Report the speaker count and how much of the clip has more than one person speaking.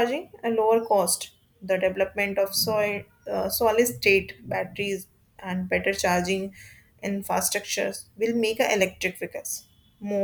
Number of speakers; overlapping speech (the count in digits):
1, no overlap